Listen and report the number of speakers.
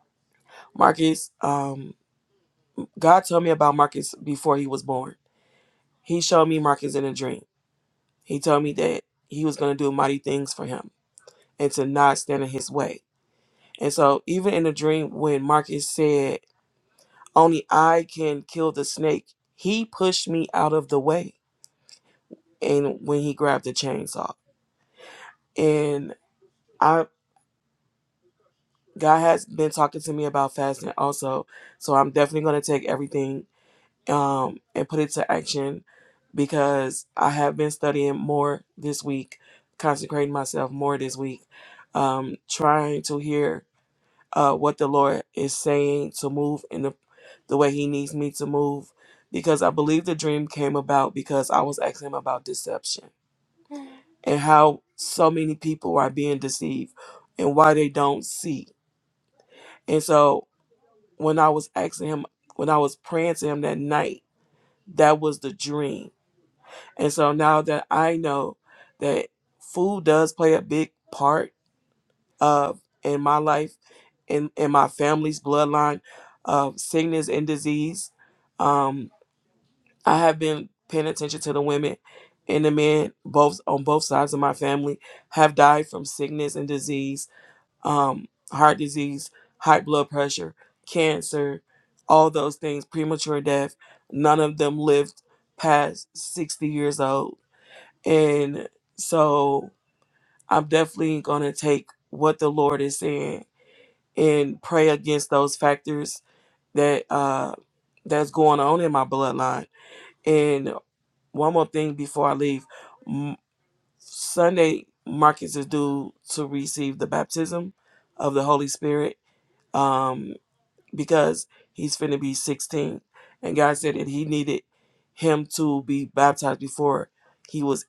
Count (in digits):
1